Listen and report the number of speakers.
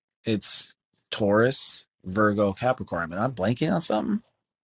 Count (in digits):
1